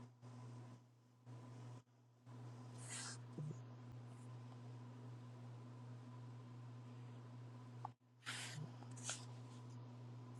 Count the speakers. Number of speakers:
0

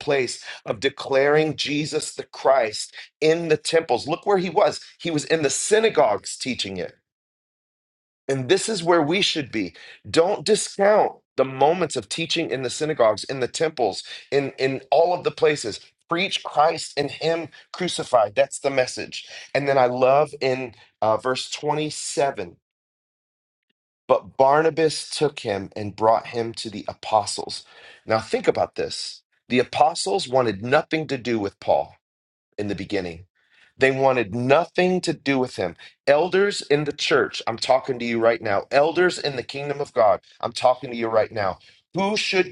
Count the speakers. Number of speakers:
1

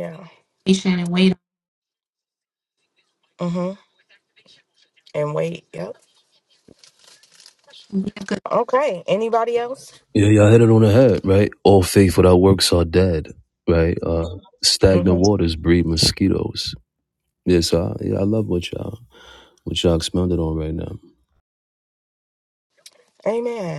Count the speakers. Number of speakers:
3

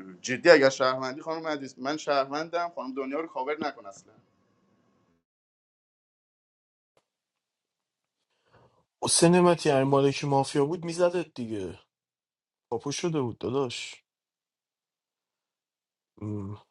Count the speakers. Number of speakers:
2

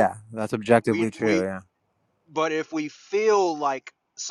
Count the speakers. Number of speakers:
2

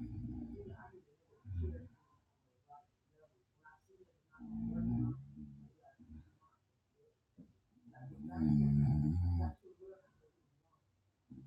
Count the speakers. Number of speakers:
0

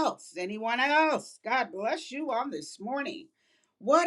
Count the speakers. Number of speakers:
1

